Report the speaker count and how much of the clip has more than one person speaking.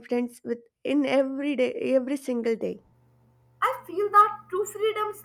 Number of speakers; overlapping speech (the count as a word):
two, no overlap